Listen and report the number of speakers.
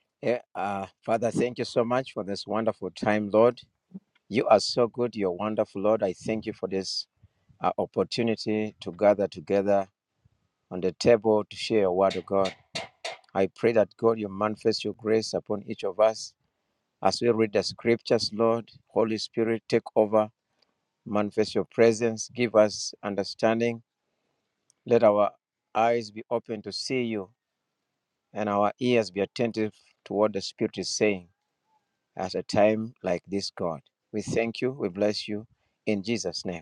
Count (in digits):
1